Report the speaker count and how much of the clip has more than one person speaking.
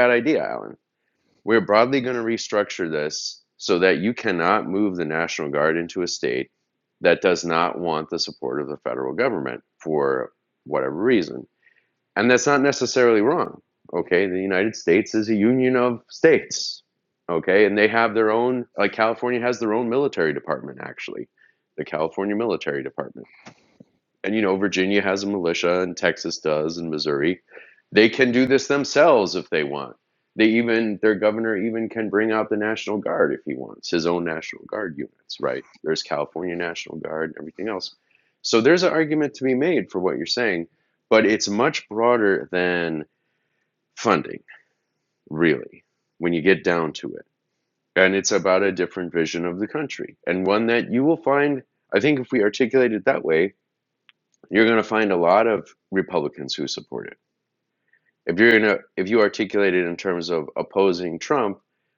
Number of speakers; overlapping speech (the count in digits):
1, no overlap